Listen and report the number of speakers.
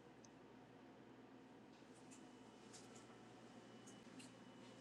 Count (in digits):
0